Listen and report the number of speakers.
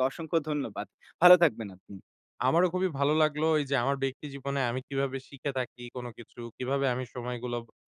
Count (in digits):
2